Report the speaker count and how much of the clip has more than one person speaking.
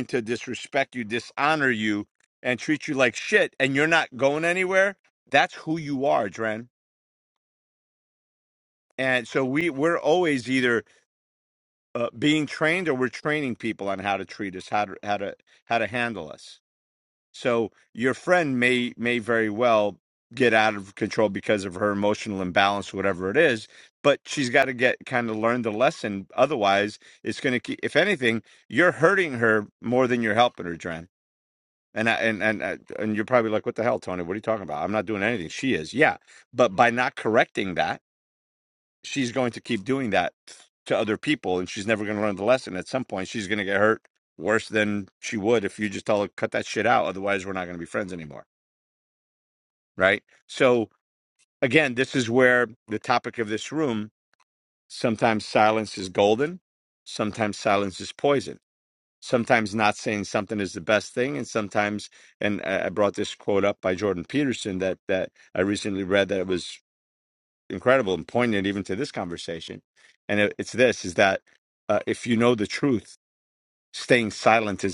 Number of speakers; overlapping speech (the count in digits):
1, no overlap